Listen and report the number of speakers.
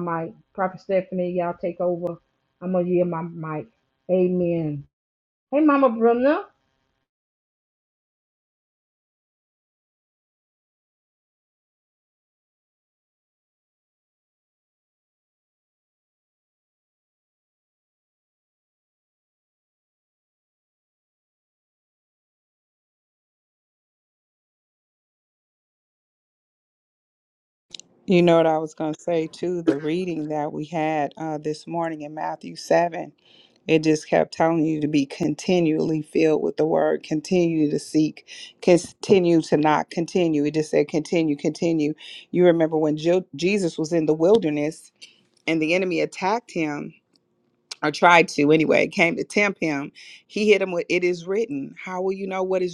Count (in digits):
2